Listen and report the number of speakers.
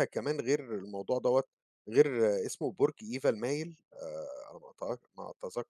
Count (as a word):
one